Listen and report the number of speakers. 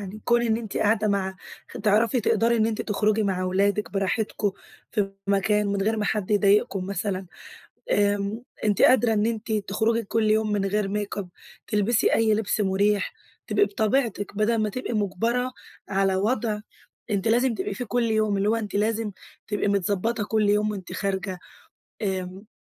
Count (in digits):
1